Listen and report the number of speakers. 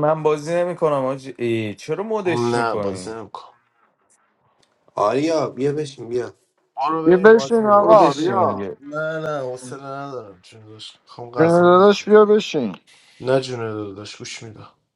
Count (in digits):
4